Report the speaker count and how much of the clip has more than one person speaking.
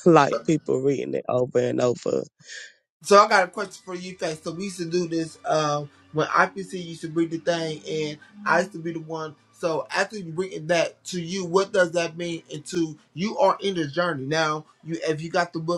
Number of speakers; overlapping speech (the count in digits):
2, no overlap